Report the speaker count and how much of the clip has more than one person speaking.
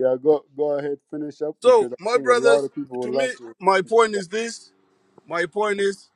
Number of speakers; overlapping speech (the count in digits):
2, about 23%